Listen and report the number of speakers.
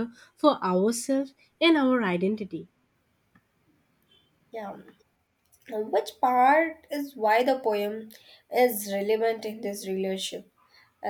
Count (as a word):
two